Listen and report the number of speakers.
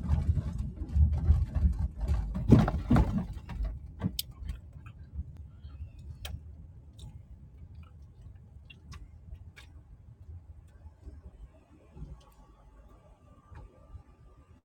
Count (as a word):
zero